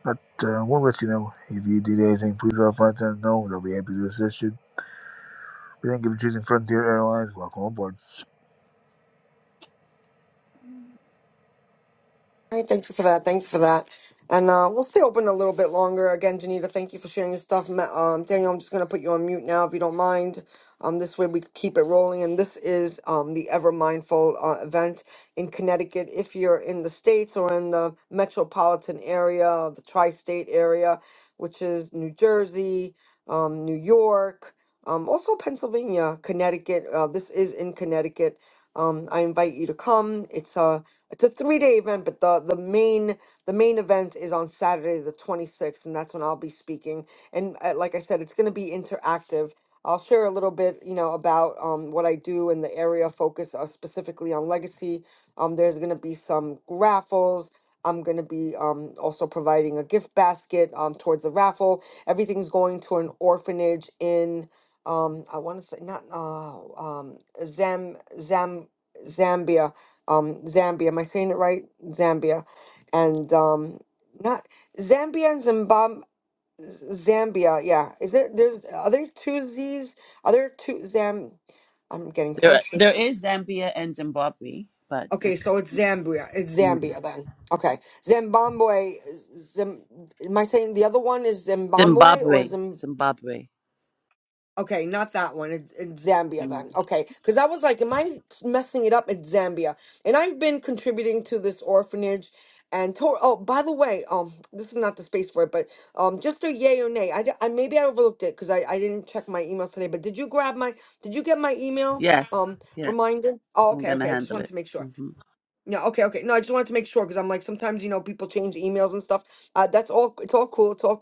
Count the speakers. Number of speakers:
three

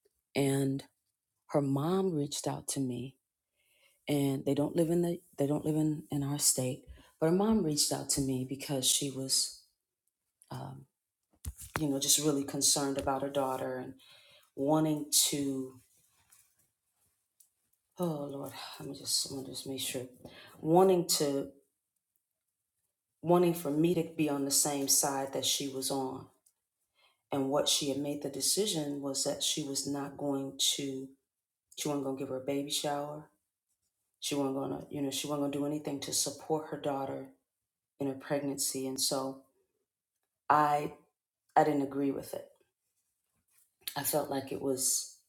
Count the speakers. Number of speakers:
one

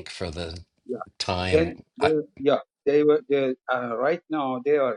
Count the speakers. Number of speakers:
two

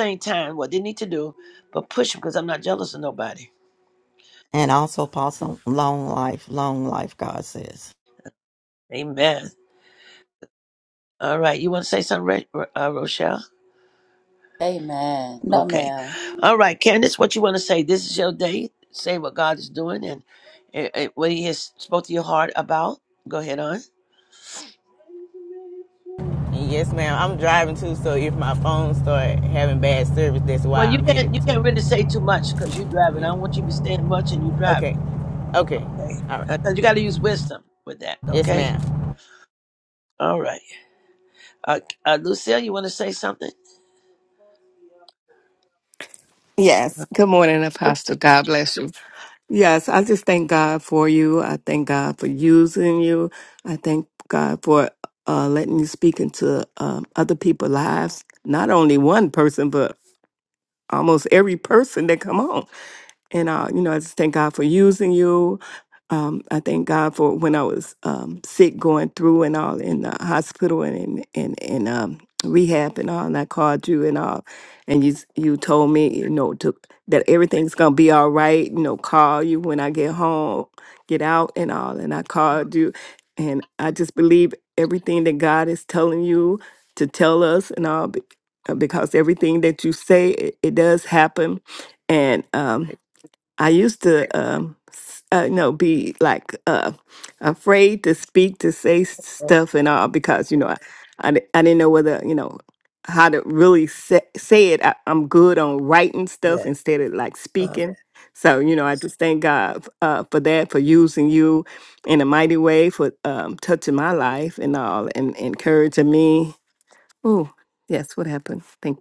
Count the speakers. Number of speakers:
five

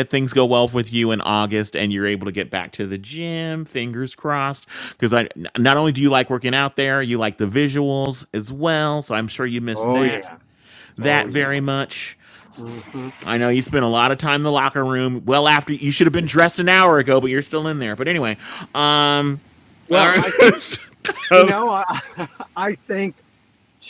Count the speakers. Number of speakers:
two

